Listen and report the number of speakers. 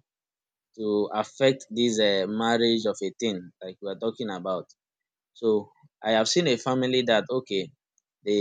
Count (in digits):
1